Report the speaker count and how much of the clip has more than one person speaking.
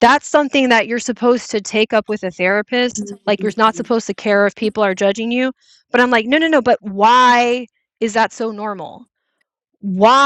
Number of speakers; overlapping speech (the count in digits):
1, no overlap